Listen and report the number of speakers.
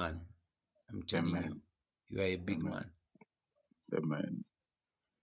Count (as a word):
two